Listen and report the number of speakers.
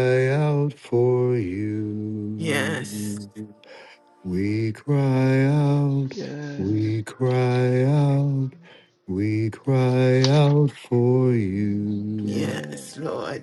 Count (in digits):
3